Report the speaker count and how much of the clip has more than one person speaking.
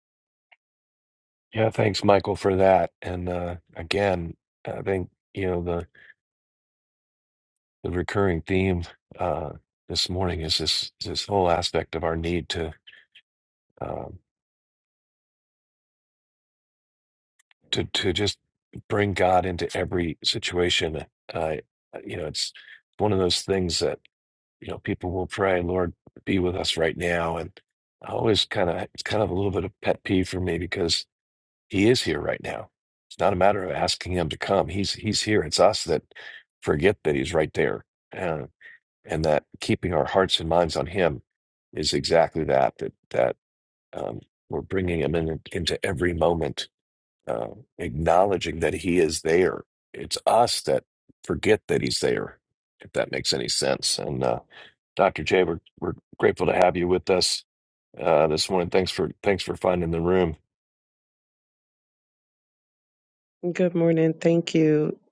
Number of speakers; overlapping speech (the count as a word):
two, no overlap